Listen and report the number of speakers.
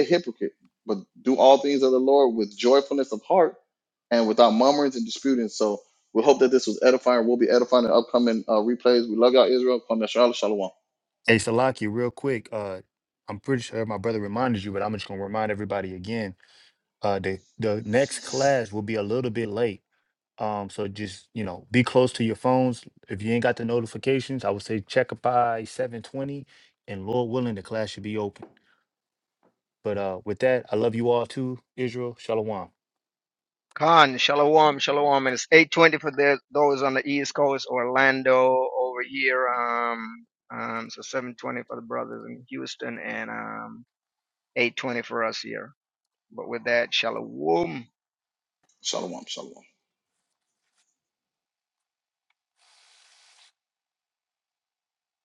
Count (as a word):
three